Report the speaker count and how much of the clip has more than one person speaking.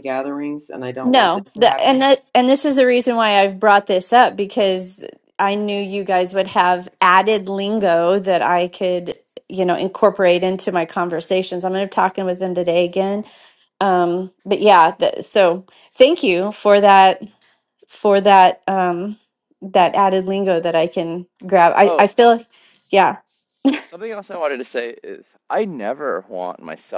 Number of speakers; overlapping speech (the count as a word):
three, about 5%